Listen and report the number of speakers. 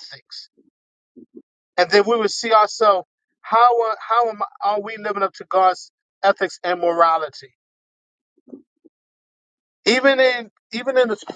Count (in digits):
1